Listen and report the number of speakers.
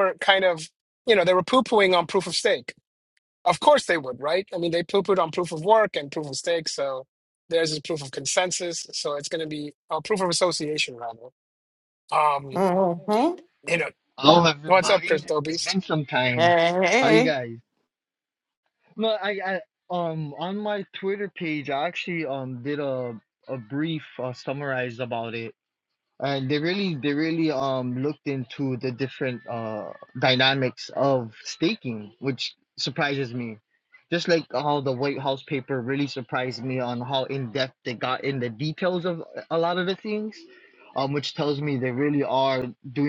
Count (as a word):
three